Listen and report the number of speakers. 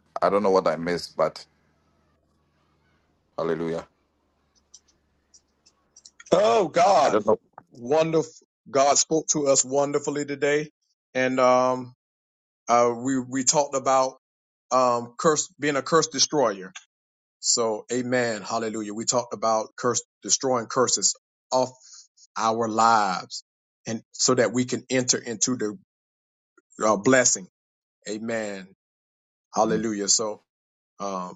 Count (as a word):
two